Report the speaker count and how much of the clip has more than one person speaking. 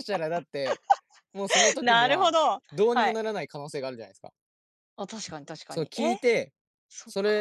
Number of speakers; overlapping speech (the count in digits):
2, about 17%